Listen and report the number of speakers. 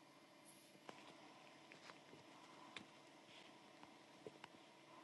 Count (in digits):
0